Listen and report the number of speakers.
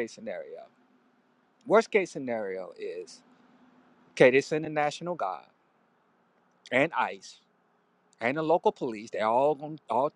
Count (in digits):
1